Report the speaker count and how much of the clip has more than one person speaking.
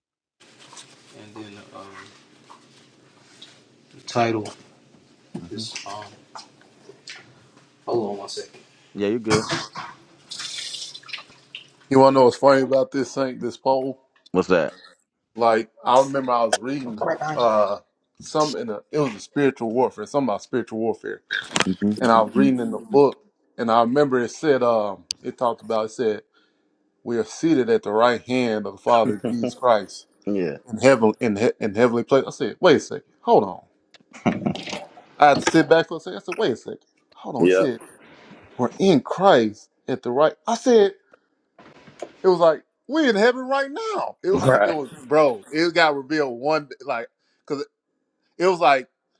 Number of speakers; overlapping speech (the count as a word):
three, about 2%